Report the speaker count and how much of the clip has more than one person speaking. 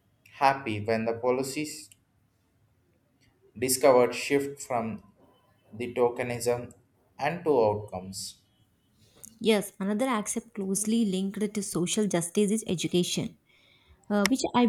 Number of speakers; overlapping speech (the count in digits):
2, no overlap